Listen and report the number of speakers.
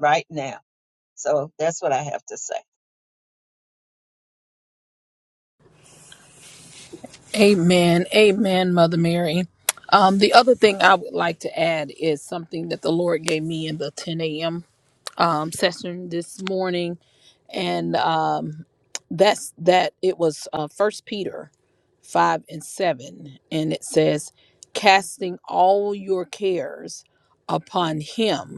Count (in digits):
2